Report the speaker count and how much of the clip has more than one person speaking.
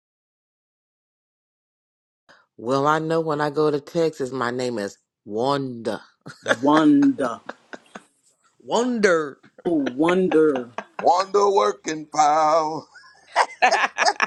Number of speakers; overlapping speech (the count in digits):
3, no overlap